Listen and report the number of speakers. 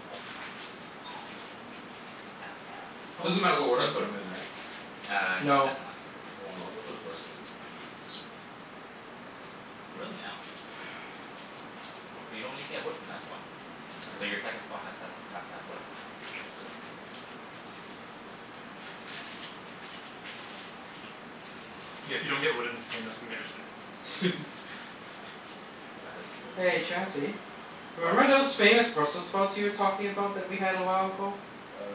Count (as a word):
four